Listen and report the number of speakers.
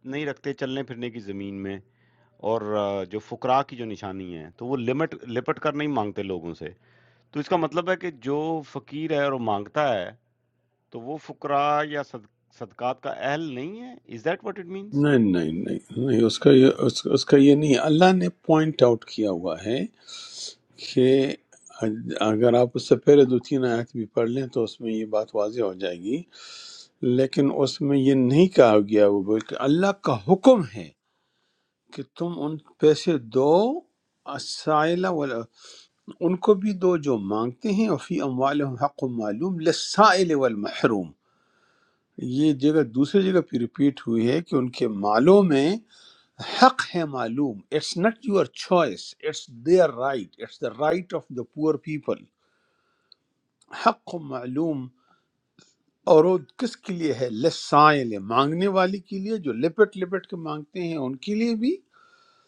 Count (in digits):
2